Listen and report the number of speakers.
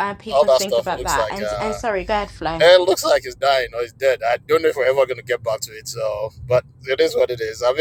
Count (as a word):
two